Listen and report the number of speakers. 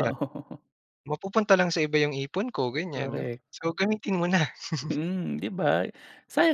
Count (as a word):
two